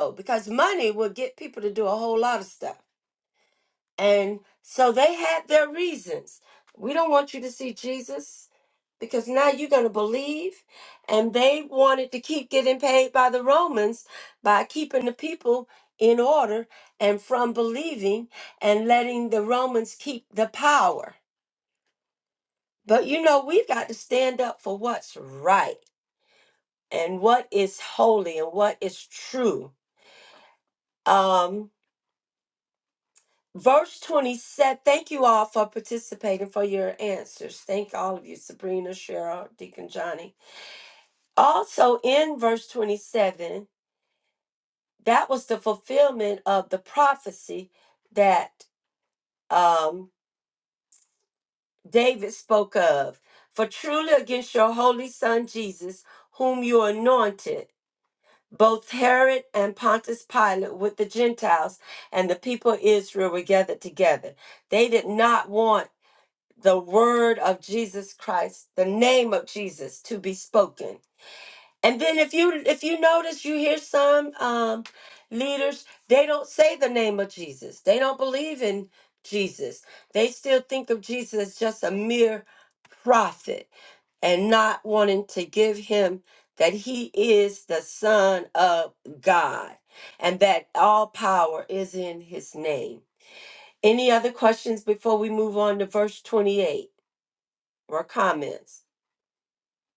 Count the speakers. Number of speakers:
1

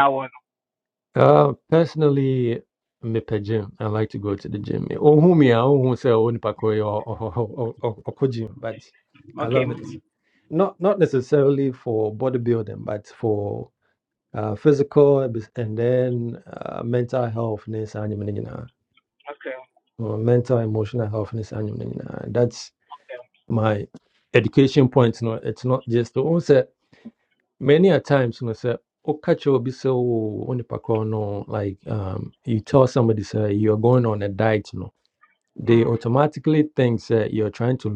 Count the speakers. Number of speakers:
2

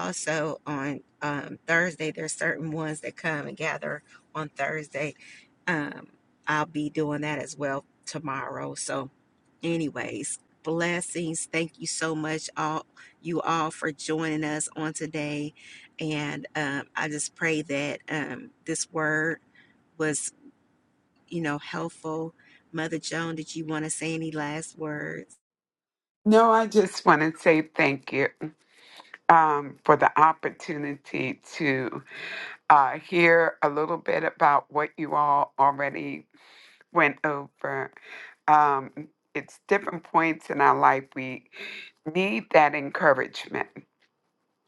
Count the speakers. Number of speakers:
2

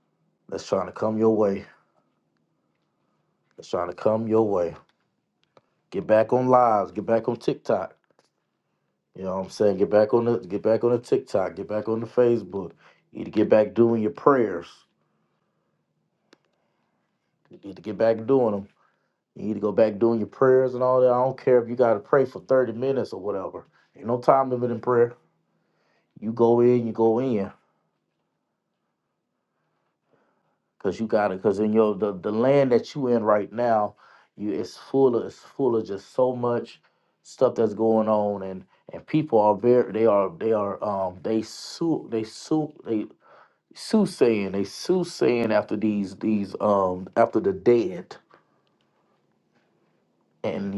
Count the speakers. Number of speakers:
1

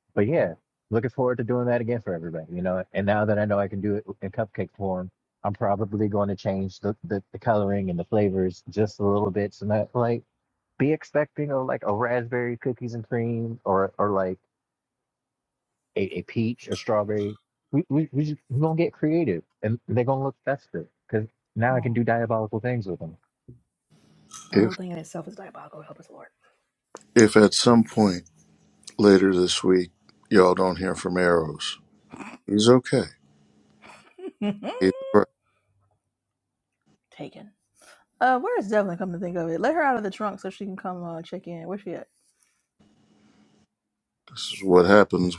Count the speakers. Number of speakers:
3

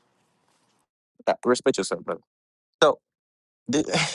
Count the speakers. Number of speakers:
1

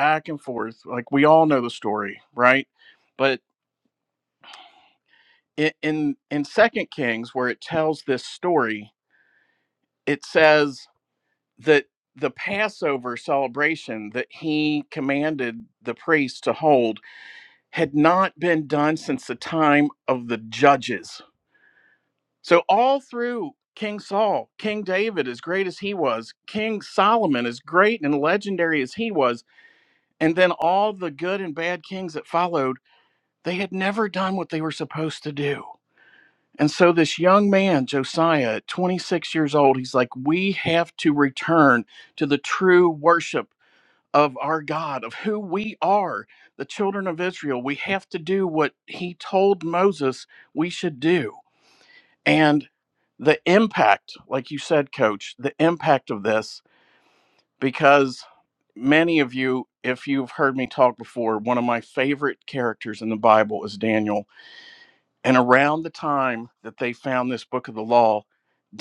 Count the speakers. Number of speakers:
1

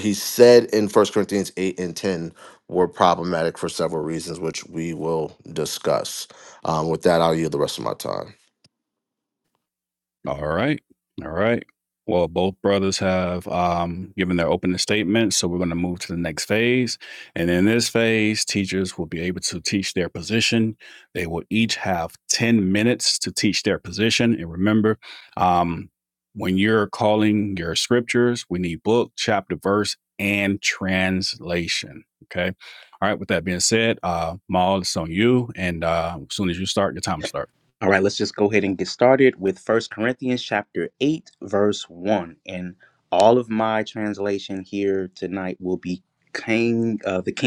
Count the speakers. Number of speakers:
3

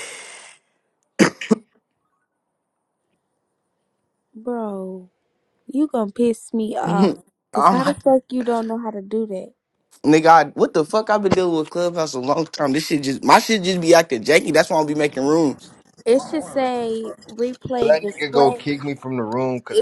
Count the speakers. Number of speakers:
3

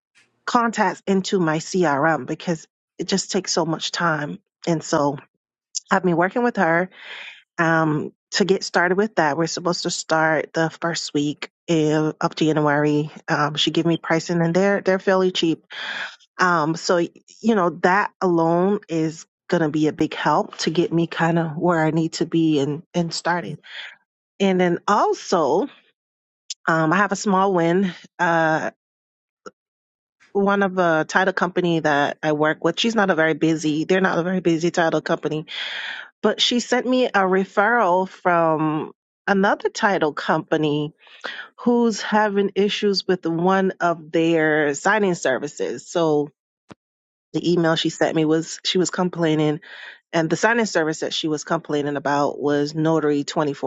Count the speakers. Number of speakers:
1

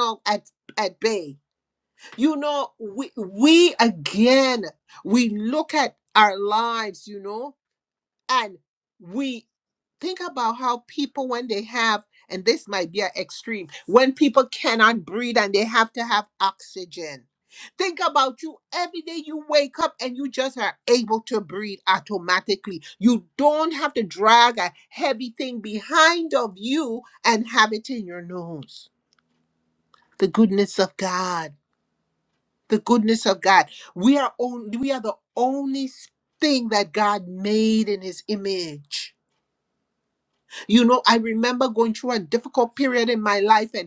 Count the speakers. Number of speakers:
1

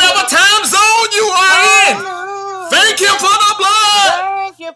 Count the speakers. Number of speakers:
2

